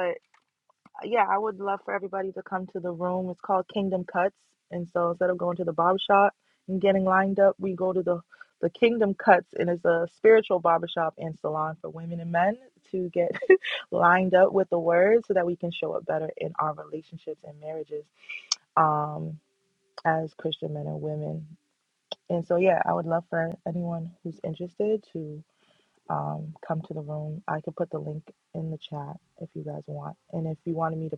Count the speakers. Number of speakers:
1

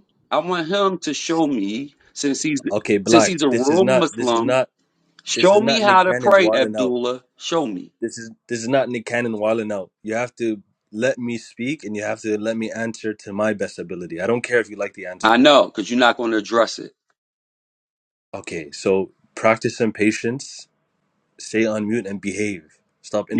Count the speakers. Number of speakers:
2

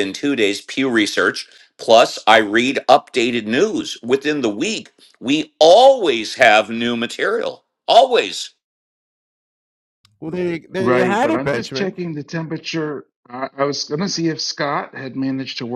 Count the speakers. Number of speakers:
3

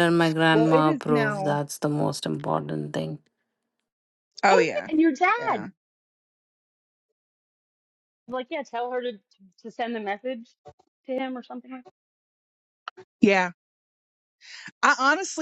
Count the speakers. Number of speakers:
3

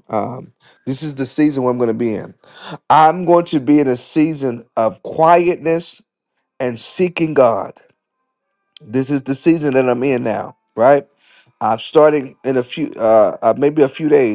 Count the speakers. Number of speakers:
1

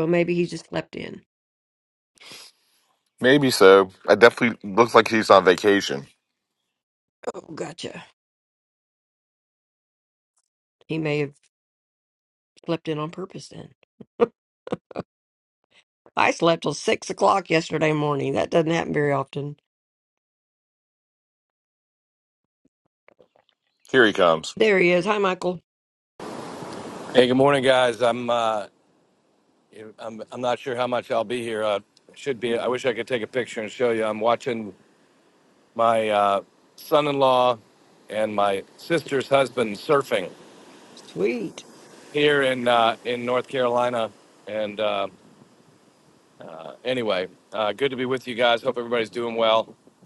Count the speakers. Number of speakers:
3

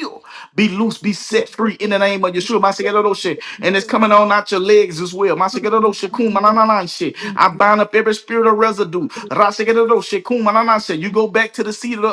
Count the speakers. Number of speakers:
1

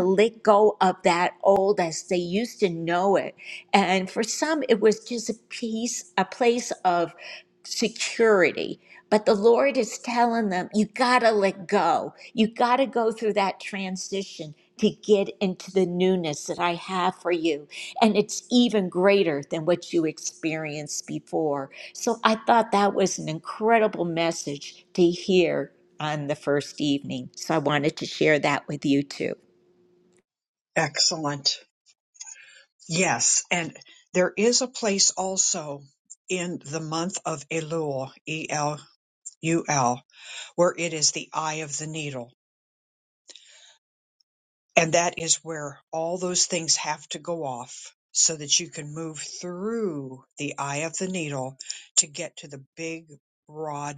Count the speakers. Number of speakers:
2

